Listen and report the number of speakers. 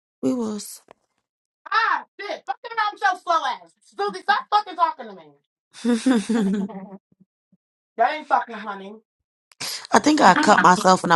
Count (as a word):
two